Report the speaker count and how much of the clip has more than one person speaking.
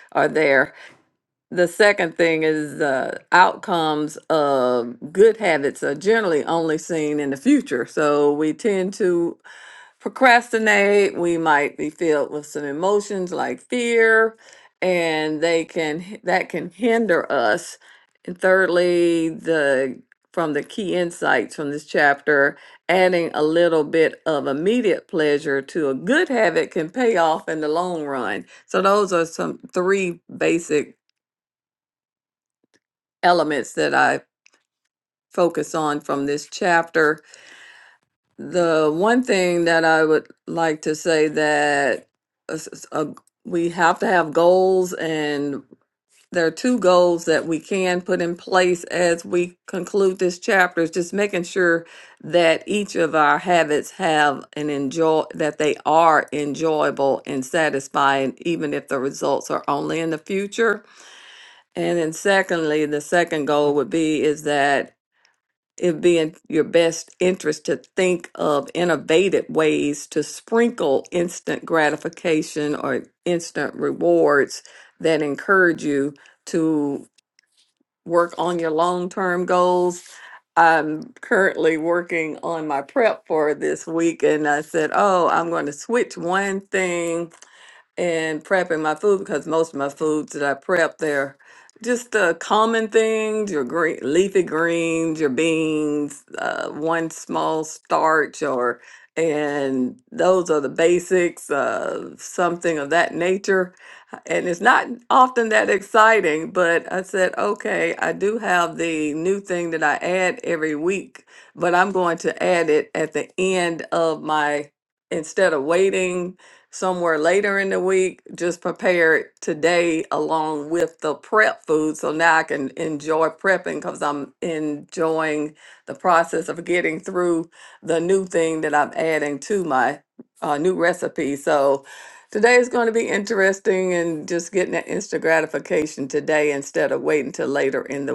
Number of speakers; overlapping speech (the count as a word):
one, no overlap